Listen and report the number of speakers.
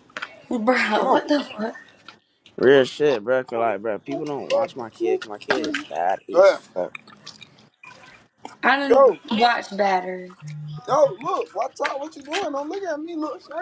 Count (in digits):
3